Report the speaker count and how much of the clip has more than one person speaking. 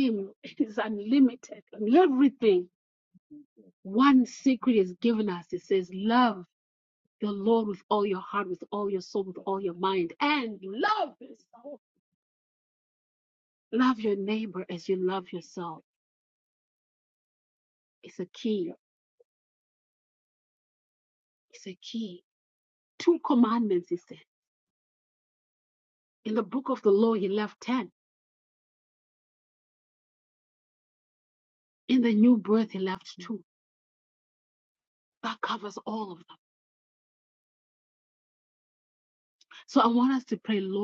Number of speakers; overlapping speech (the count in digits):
1, no overlap